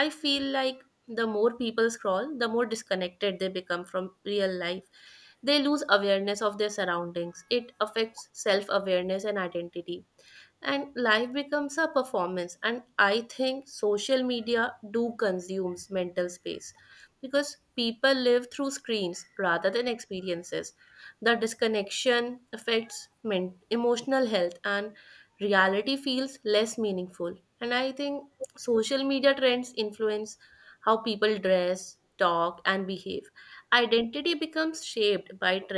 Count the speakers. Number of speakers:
1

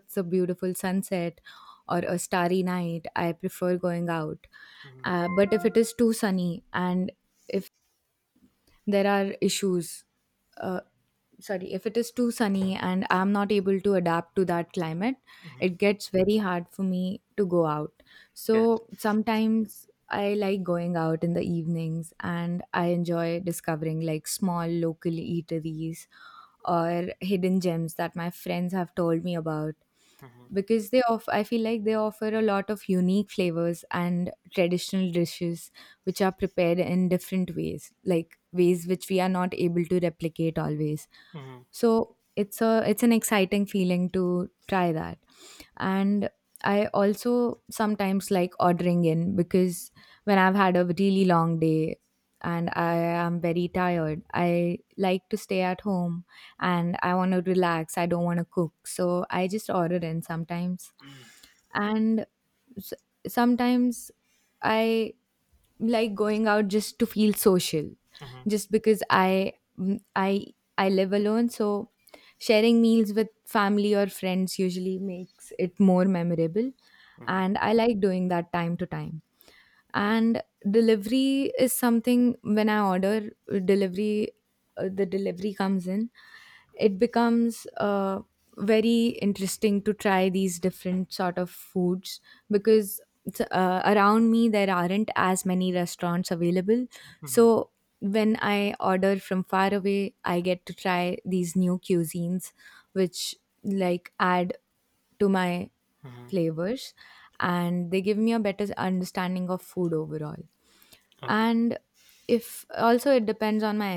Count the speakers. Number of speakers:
2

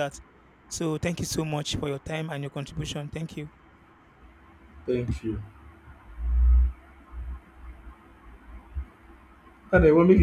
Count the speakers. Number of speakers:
2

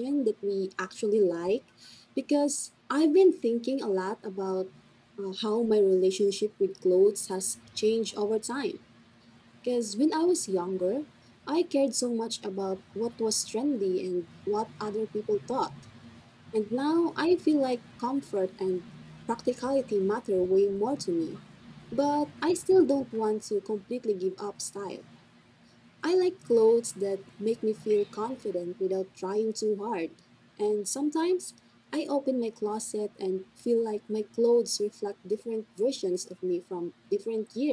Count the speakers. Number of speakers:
1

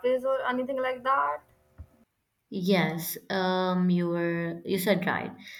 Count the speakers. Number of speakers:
2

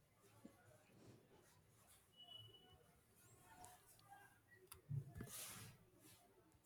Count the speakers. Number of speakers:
0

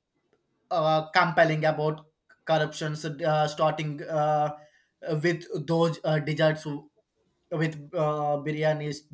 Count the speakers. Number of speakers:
1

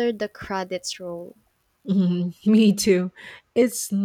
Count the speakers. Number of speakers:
2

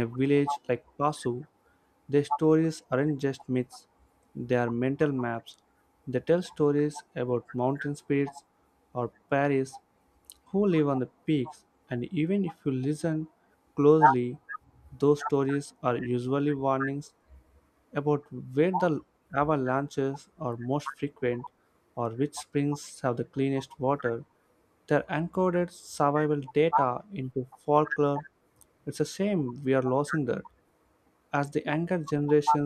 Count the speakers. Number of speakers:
1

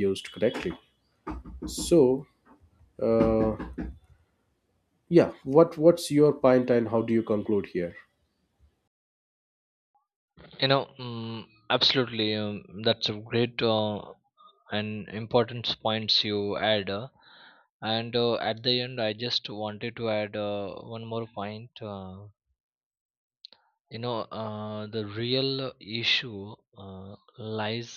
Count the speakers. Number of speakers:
2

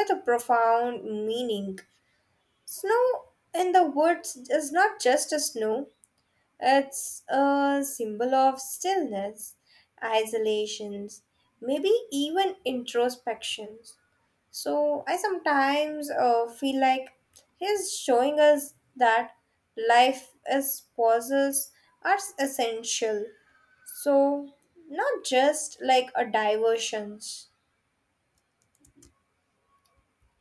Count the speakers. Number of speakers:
1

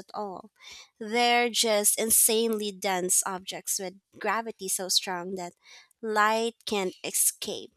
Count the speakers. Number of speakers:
1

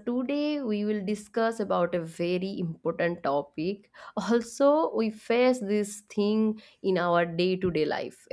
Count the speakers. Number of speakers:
1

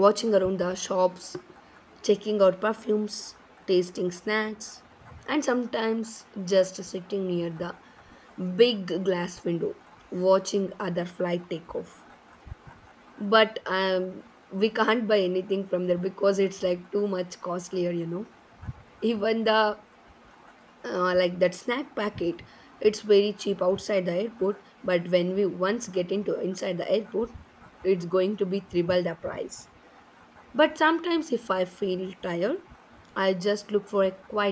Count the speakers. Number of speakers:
1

